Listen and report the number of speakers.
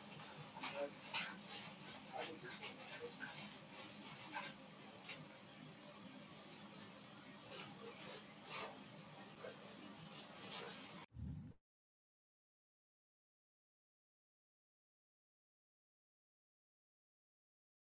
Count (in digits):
0